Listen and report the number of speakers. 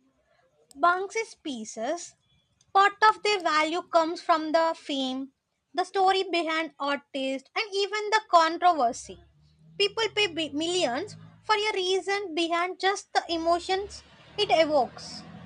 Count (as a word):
one